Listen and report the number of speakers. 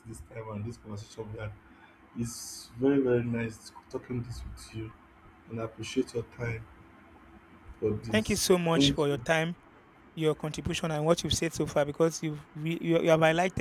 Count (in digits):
2